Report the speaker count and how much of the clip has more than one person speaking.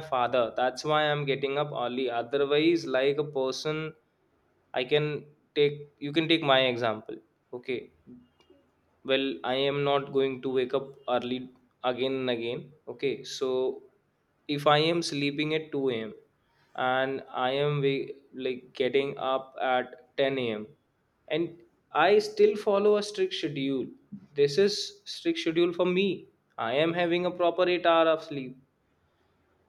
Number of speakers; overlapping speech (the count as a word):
one, no overlap